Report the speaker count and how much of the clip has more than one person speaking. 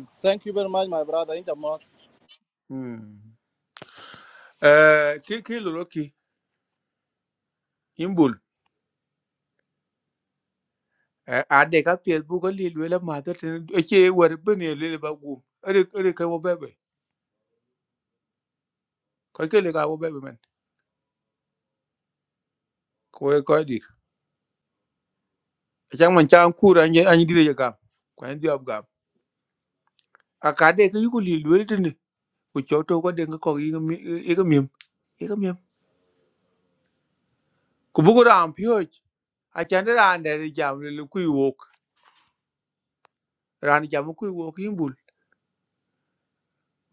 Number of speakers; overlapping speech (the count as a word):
two, no overlap